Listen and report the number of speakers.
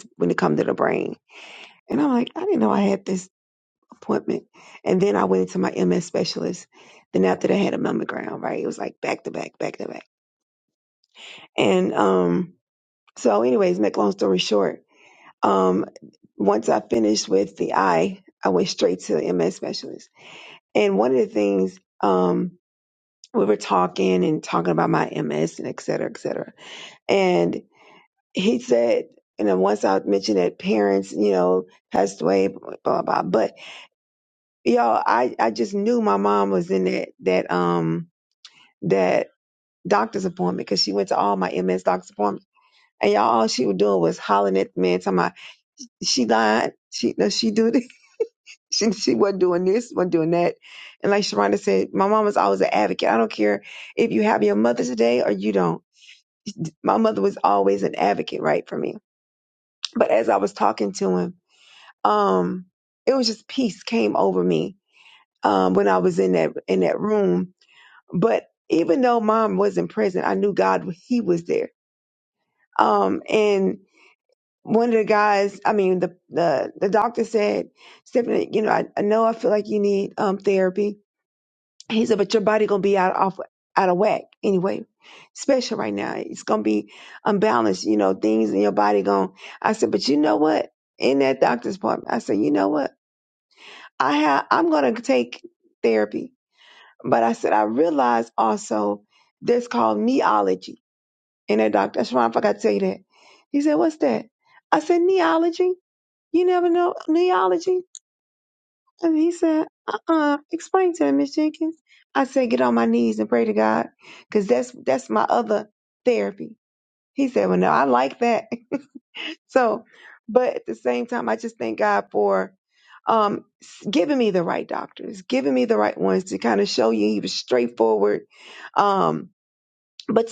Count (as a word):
one